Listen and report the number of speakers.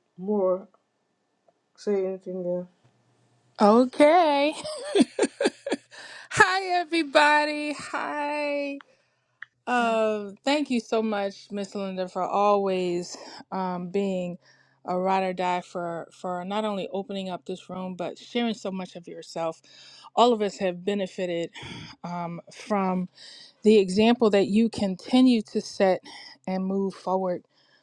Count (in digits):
2